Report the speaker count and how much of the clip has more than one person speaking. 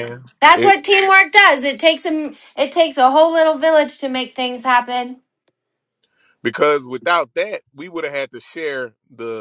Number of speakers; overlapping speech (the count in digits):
2, about 3%